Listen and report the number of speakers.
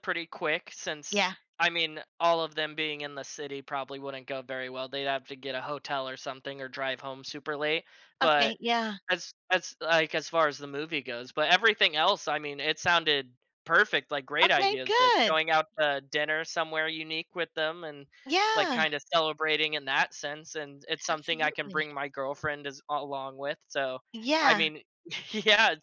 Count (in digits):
2